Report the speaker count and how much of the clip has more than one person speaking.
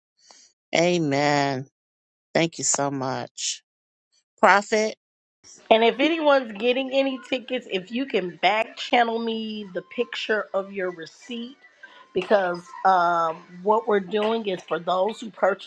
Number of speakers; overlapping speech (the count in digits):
2, no overlap